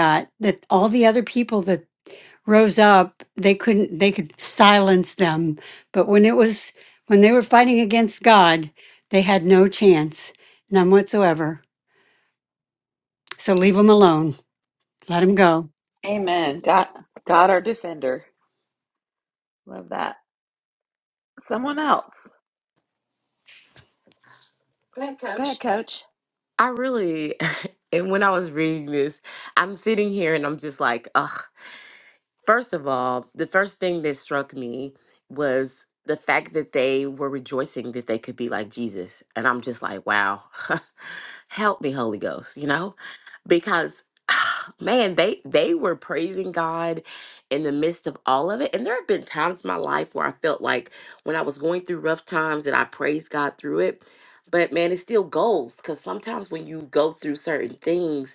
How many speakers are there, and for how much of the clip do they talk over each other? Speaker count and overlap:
three, no overlap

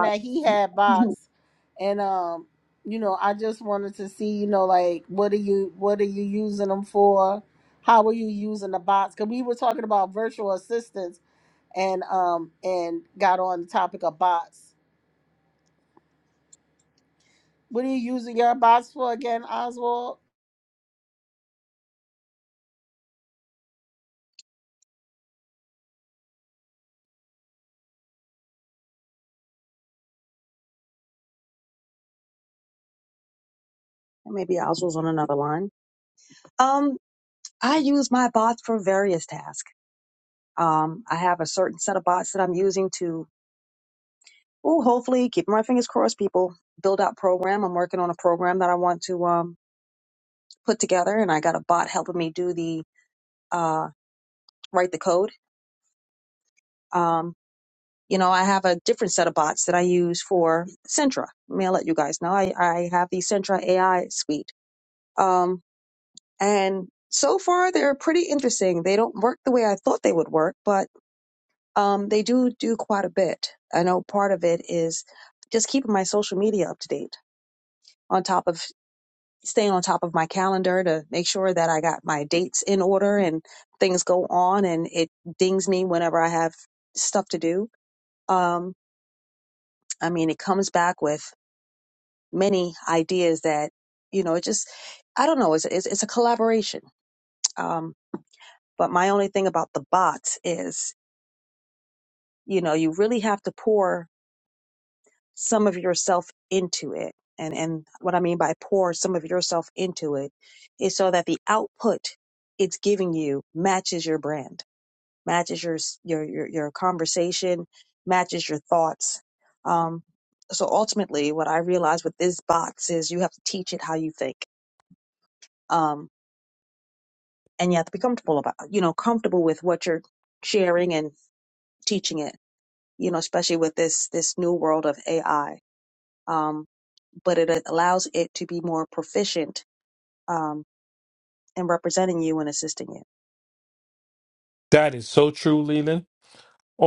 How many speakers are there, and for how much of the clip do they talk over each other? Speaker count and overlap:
three, under 1%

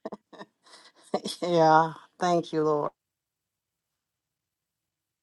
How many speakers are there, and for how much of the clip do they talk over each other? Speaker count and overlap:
one, no overlap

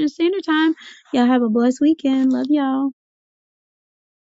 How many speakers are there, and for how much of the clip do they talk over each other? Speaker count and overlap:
one, no overlap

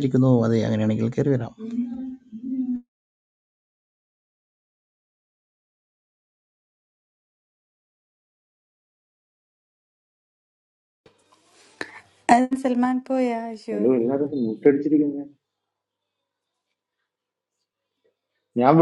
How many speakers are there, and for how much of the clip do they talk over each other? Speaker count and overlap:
three, about 1%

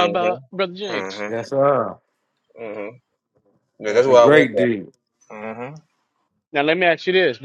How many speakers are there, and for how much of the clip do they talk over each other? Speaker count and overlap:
three, about 20%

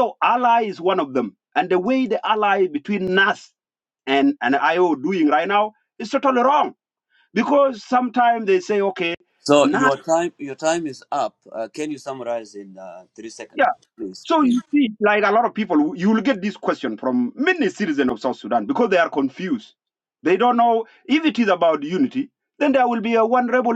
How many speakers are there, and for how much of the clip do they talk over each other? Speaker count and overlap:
two, about 3%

